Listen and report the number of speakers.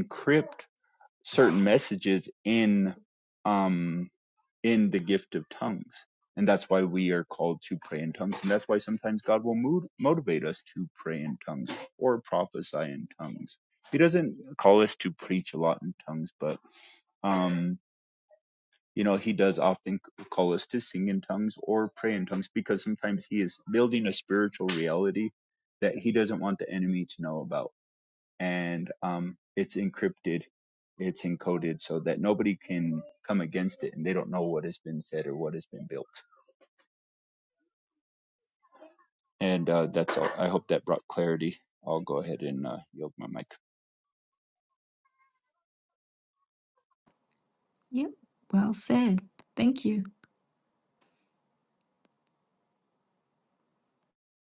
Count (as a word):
two